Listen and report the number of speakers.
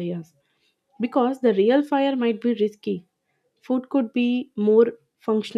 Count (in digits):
1